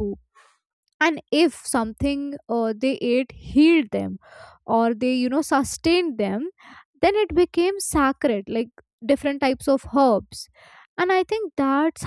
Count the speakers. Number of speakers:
one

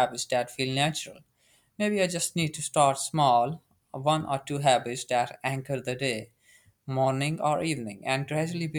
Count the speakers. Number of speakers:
one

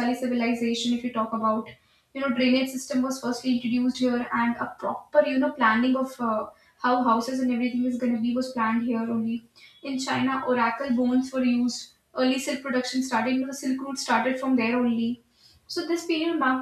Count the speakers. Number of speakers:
one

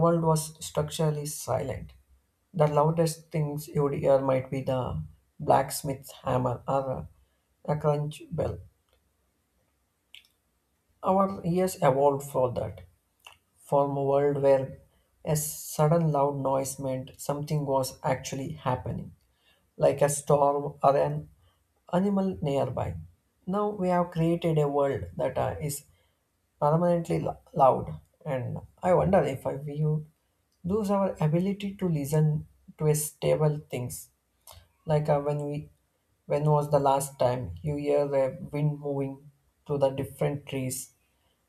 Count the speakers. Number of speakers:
one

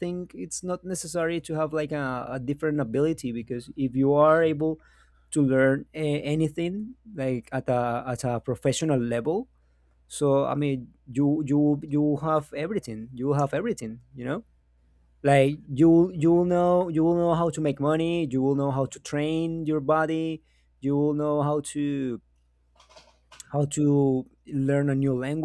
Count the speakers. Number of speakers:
one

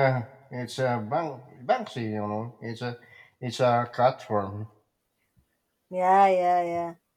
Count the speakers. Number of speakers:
two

